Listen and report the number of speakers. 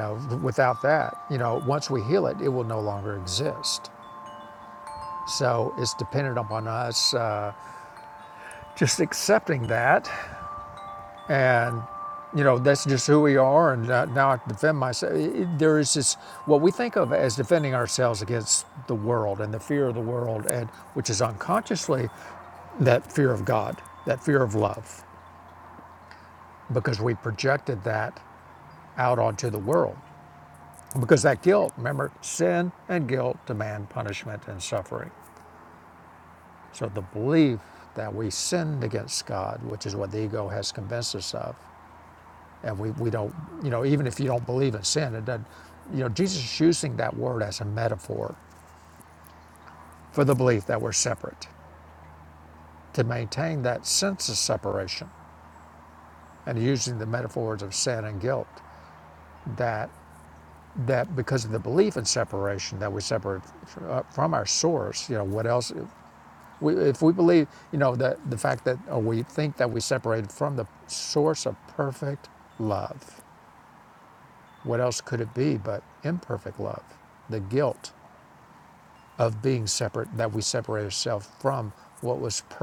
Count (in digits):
1